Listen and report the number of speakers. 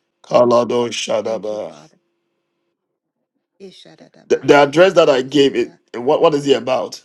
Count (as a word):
two